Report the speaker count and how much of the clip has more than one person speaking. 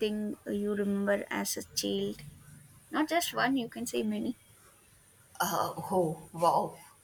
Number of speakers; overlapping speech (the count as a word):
two, no overlap